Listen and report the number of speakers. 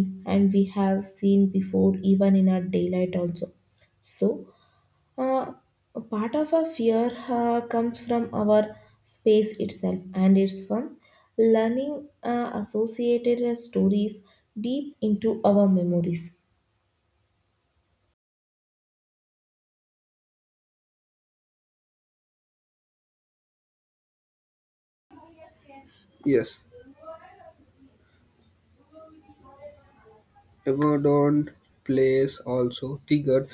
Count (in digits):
2